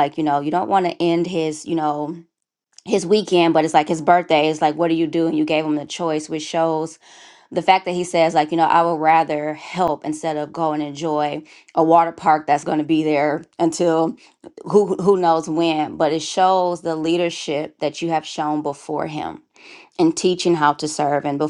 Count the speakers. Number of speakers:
1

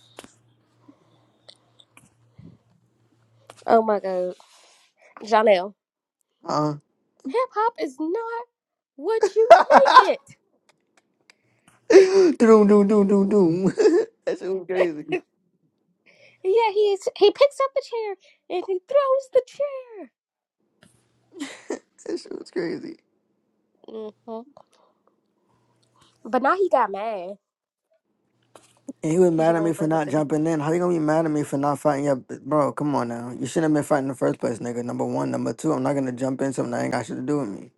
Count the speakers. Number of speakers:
2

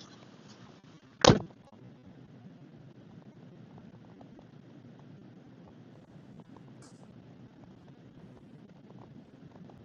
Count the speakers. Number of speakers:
0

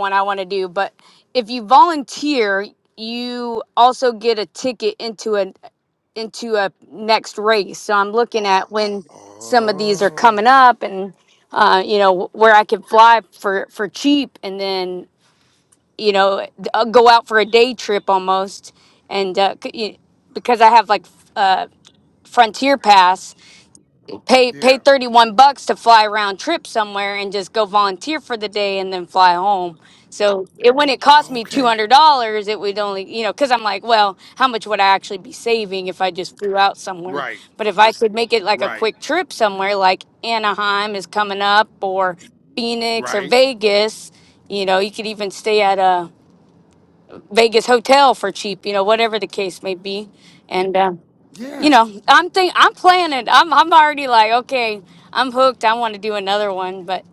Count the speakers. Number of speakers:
2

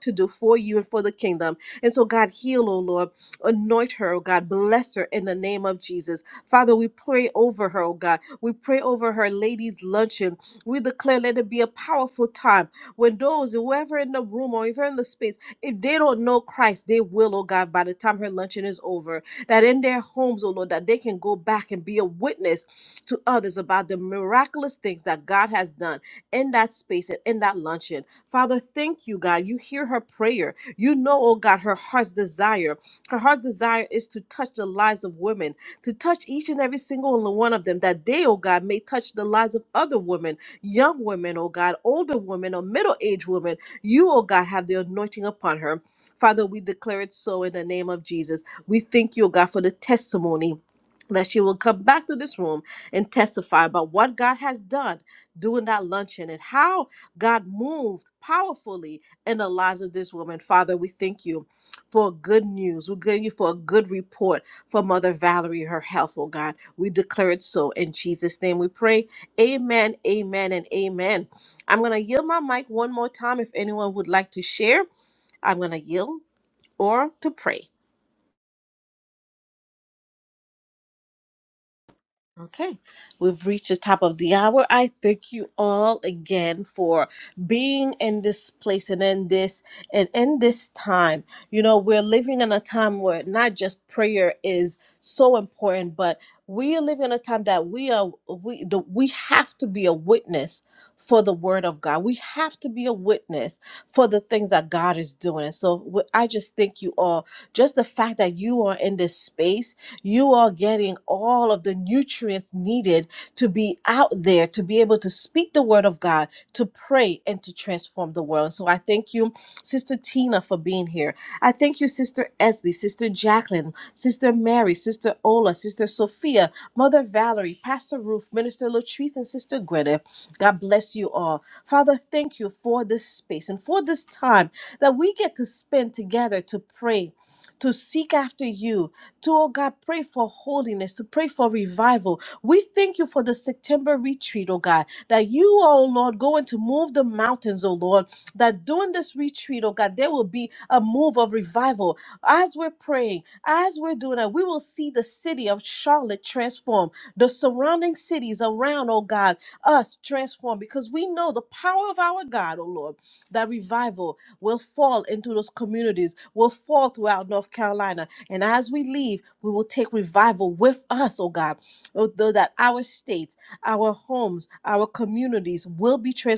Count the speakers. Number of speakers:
1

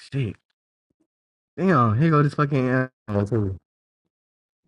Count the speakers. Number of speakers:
1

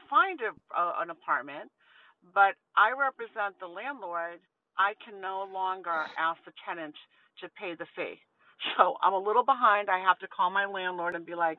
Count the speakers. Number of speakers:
1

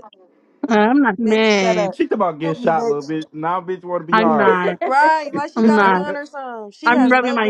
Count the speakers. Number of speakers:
3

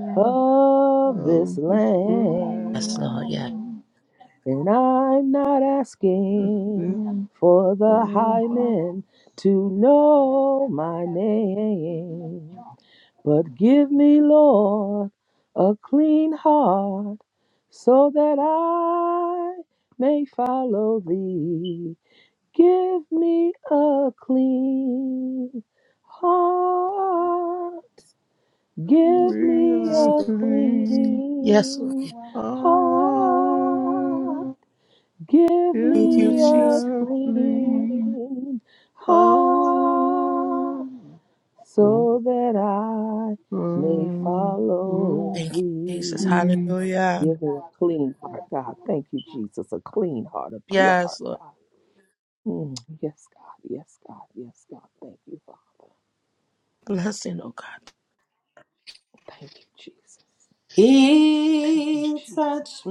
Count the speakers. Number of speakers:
4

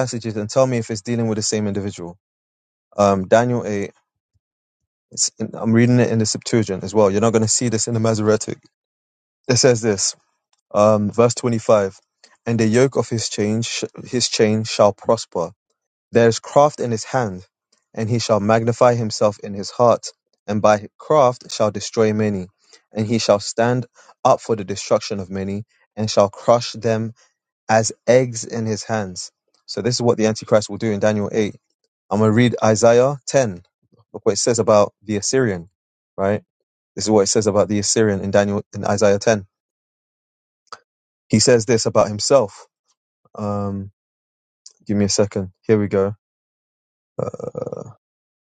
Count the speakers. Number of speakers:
1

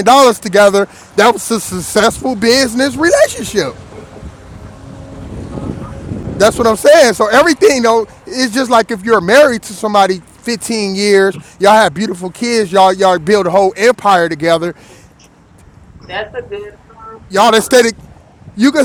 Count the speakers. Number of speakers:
2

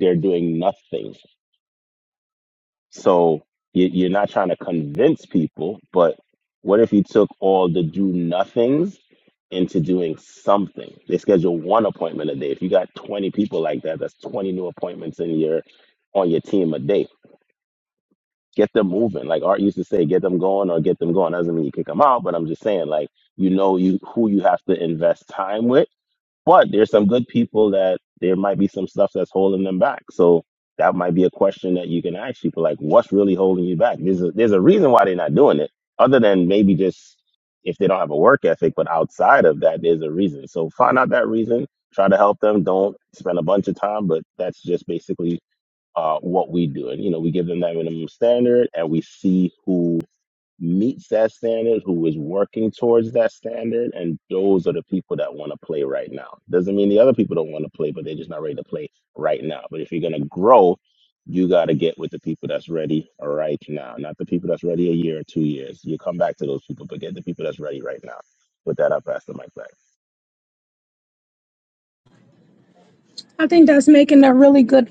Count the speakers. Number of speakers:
2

